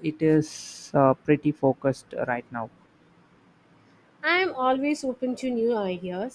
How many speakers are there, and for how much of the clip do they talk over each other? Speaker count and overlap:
2, no overlap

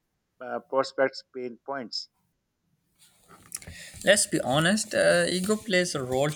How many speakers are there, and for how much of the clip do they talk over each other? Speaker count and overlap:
2, no overlap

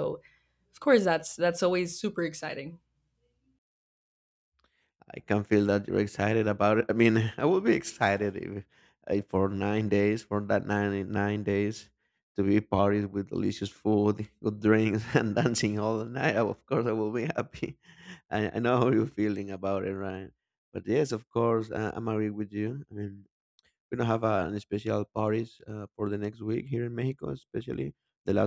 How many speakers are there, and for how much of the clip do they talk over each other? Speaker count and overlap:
2, no overlap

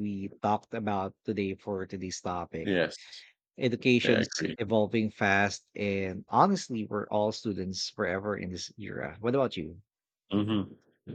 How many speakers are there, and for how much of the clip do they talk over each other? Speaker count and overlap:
2, about 5%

